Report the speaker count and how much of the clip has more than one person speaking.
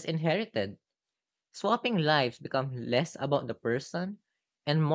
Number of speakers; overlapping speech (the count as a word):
one, no overlap